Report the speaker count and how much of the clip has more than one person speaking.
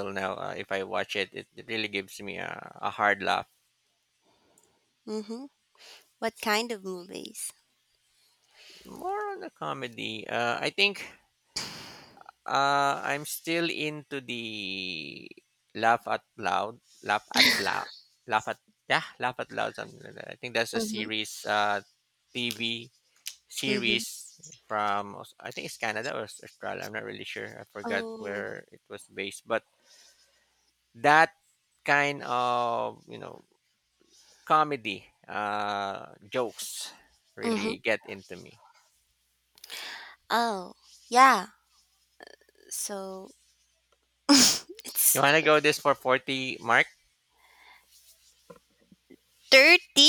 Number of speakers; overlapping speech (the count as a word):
two, about 4%